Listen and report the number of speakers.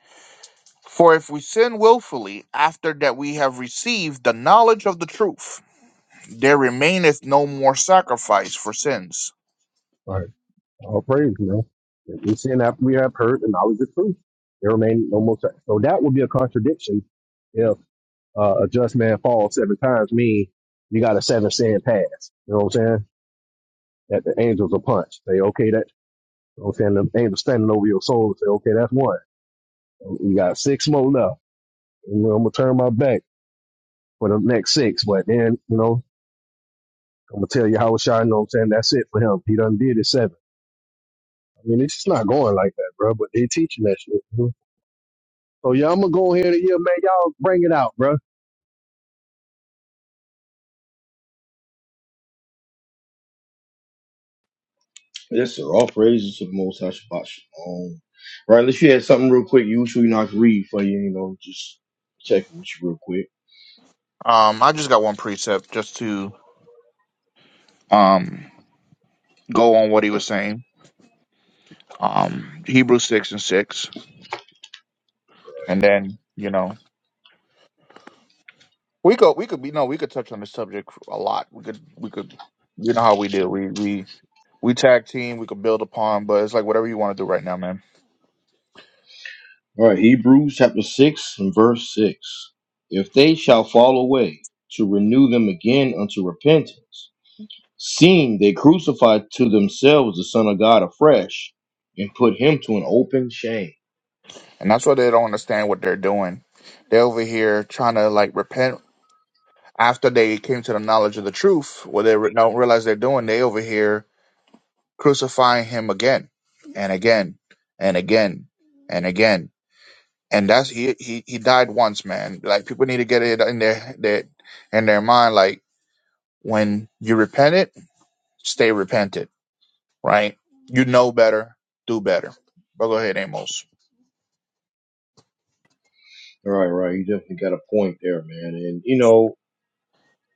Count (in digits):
3